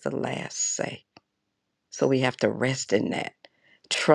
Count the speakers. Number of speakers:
one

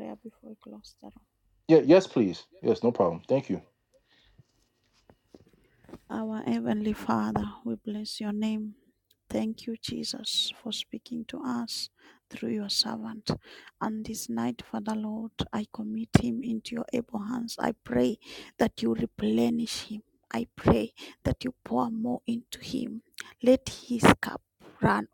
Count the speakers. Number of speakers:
two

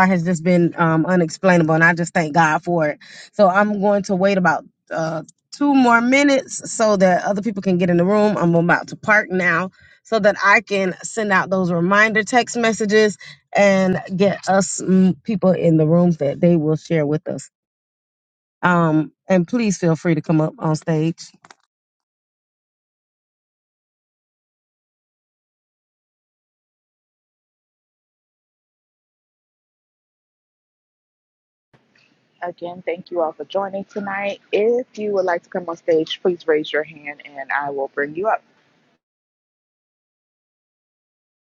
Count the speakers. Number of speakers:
two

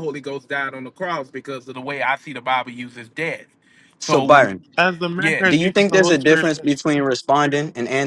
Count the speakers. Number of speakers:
three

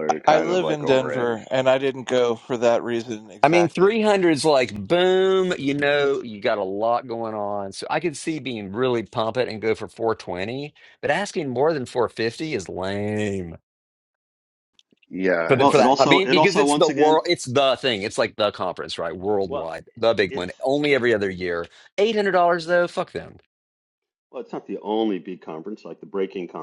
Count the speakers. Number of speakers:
four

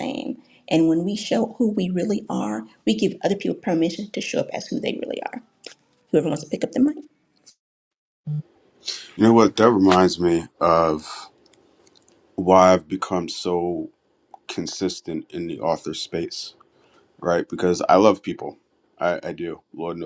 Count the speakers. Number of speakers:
two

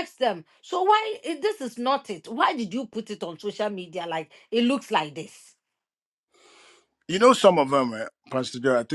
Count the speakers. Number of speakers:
two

